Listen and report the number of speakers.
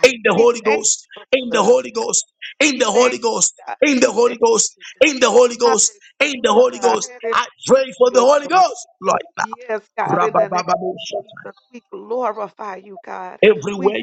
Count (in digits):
2